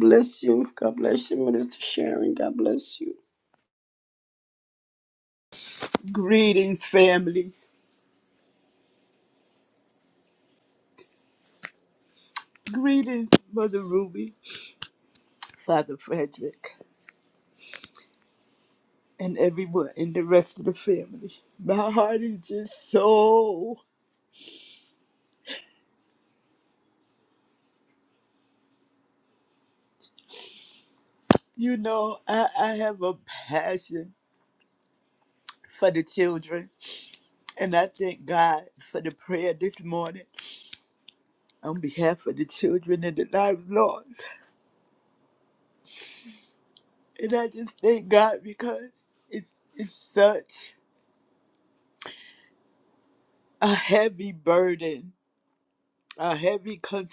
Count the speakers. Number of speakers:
2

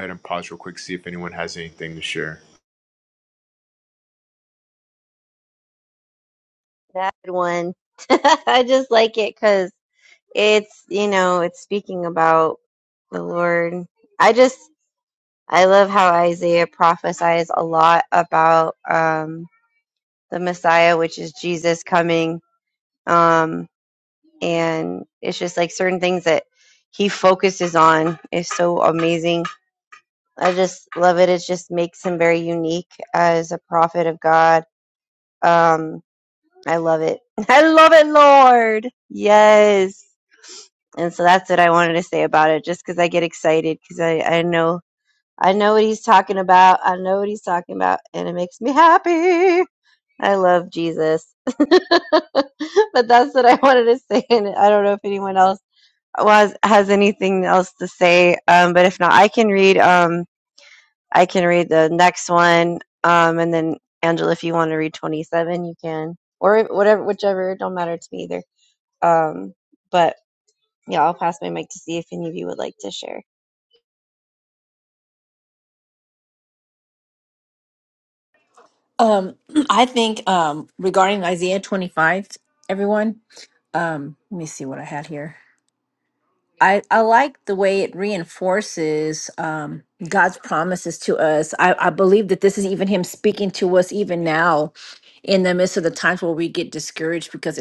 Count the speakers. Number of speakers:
3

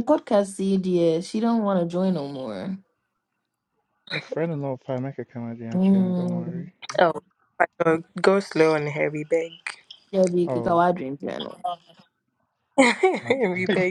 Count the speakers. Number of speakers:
3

